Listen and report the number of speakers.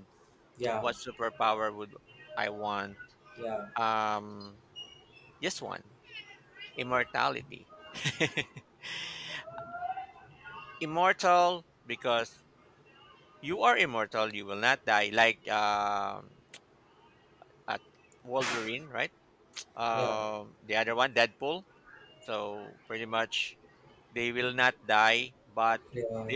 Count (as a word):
two